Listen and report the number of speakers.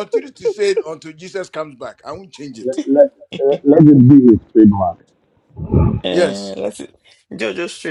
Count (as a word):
three